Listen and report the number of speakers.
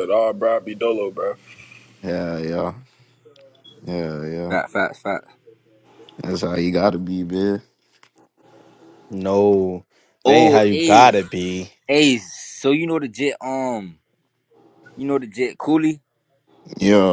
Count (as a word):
four